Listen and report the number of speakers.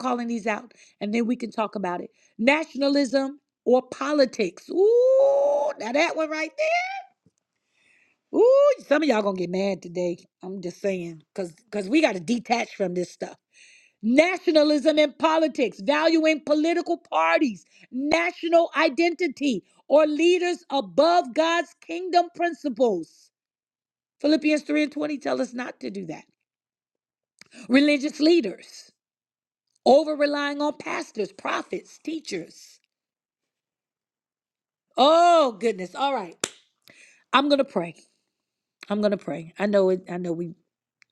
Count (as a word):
one